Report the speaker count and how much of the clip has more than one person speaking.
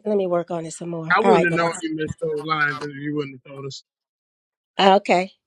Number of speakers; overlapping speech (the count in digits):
2, about 13%